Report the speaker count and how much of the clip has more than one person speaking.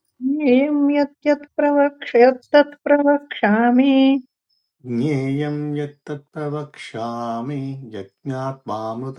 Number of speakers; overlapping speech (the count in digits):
2, no overlap